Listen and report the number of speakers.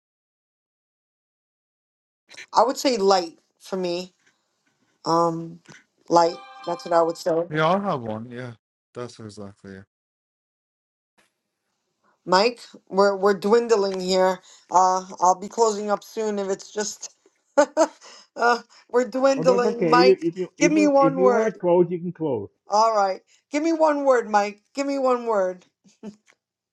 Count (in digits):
3